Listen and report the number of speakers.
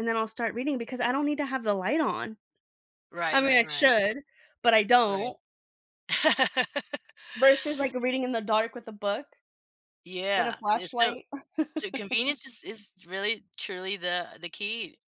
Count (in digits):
2